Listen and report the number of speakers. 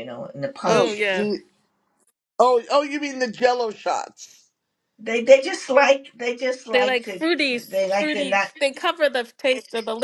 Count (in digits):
3